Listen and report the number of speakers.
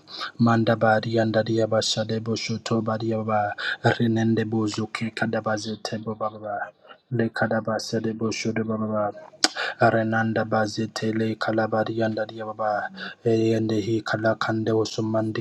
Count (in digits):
1